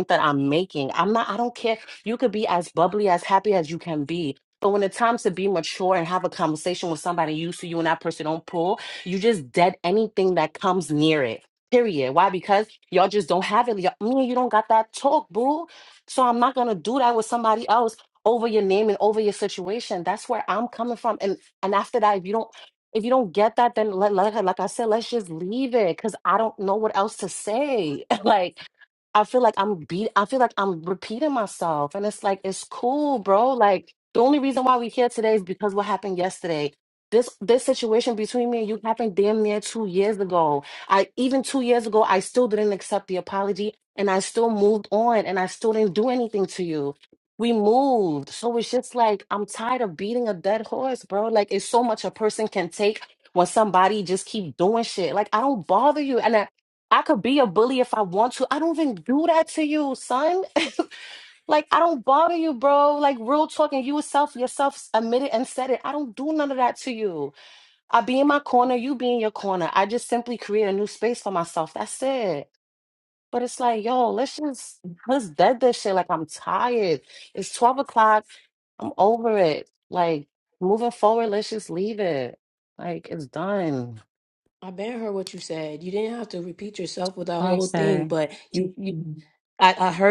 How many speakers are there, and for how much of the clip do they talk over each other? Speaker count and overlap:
2, about 1%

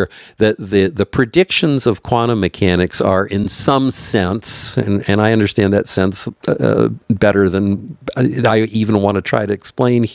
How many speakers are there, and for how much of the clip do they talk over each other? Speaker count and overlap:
1, no overlap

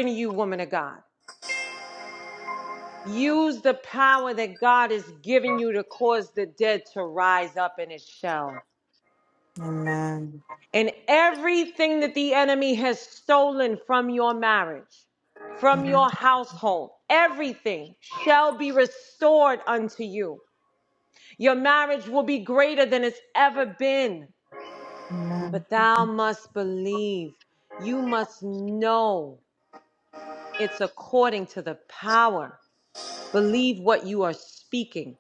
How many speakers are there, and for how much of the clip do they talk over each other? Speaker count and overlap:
2, about 1%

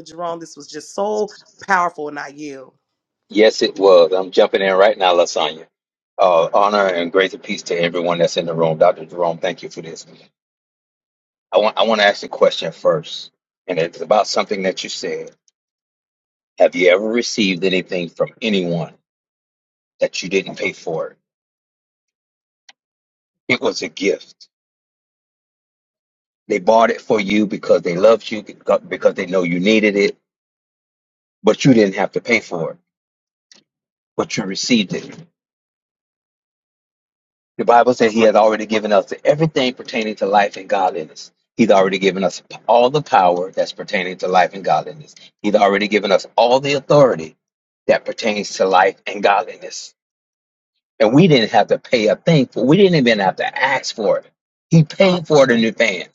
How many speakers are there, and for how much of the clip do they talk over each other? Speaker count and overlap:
2, no overlap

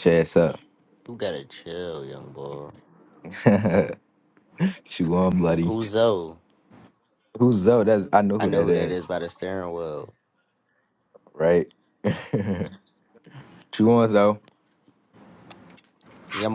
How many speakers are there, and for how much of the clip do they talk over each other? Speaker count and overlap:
2, about 4%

